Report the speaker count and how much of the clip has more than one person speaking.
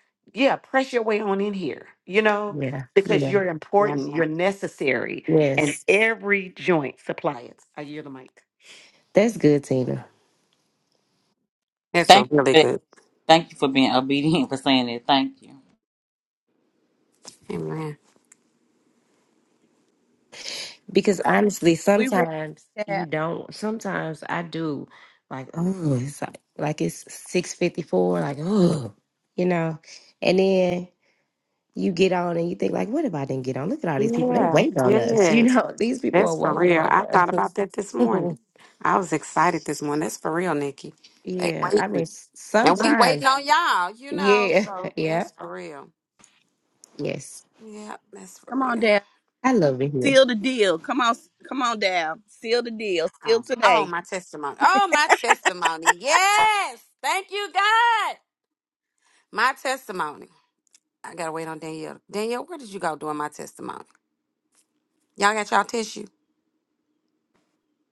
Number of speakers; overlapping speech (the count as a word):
five, about 12%